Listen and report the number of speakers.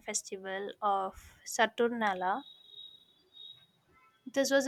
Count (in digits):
1